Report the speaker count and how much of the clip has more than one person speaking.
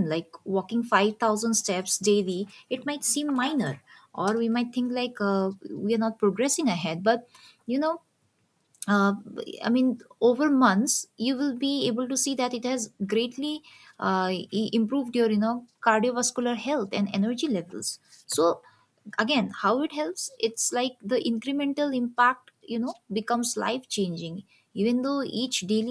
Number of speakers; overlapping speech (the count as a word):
one, no overlap